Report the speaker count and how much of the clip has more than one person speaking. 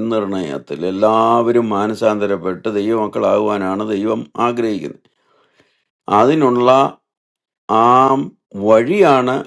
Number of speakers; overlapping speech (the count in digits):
1, no overlap